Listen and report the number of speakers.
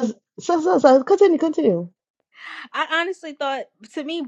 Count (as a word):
two